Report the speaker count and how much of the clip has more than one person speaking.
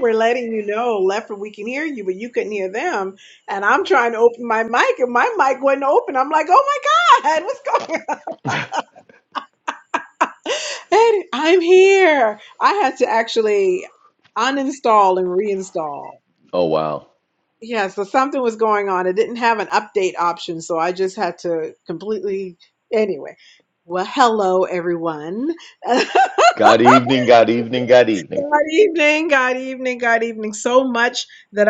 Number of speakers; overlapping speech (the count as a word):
two, under 1%